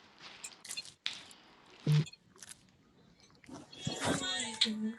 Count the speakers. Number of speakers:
zero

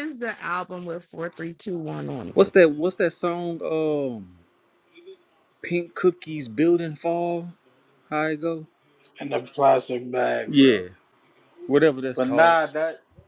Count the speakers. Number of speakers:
three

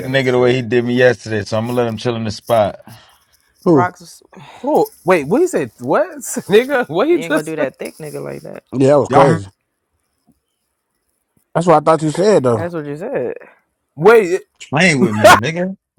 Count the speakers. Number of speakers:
four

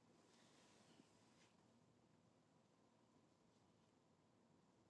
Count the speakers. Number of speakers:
zero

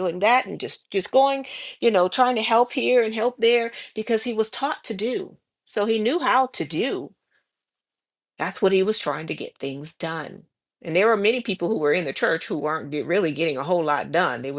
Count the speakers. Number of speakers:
one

